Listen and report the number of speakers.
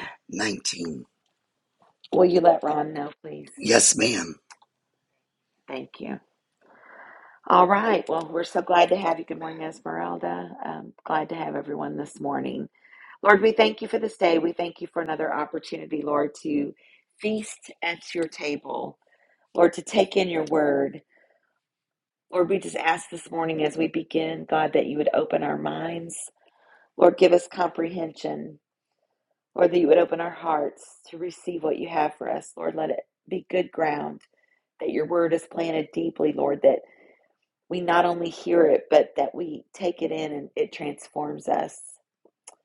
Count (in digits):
2